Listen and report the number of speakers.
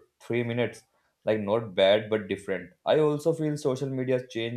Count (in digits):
1